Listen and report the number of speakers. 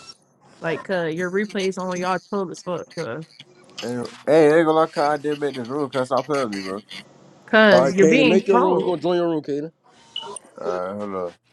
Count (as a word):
three